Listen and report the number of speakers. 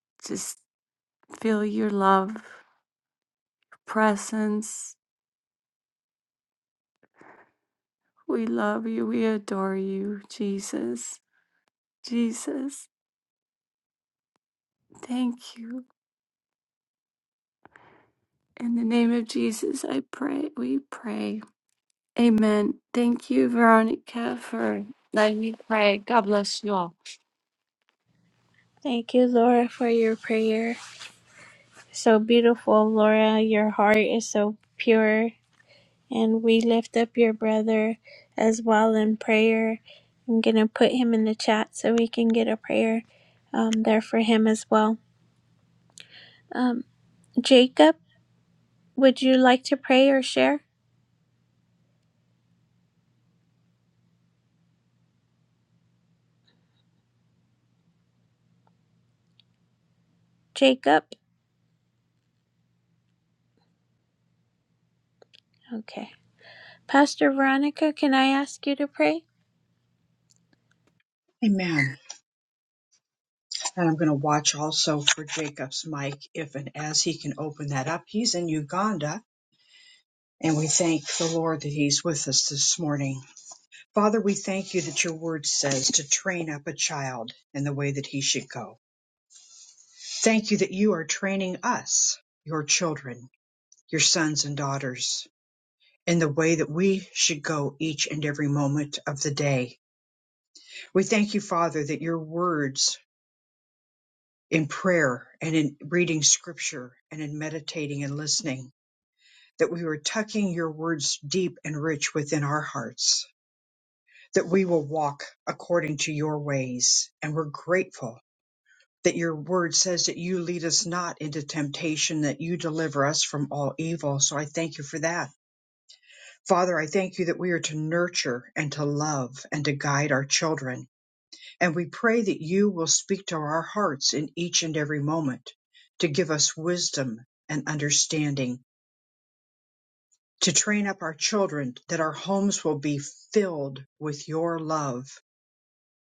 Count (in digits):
3